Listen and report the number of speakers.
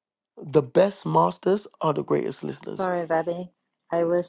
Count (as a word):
two